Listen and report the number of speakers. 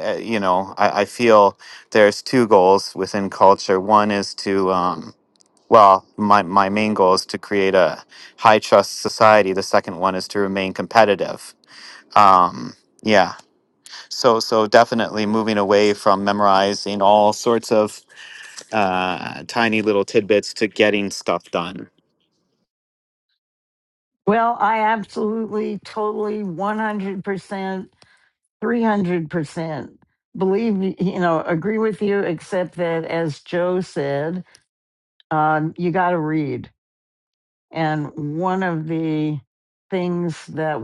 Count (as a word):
two